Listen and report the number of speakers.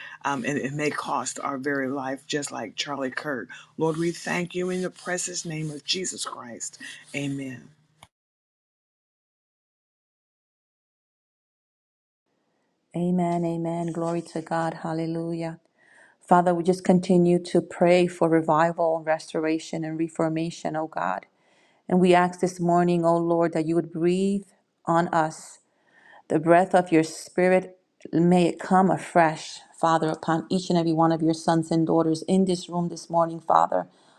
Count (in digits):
2